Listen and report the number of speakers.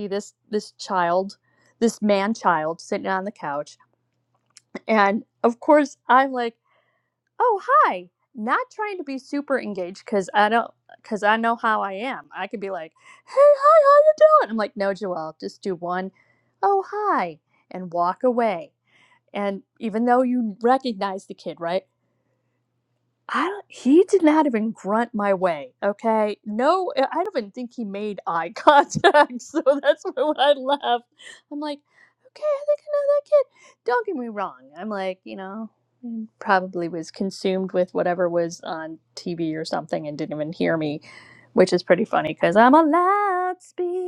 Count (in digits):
1